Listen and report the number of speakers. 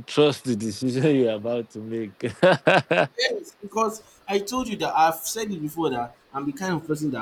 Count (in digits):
2